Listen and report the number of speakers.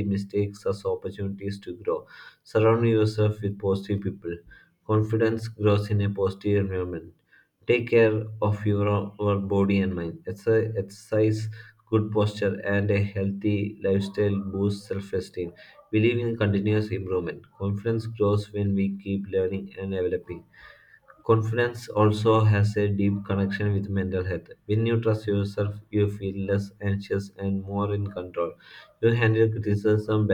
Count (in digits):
1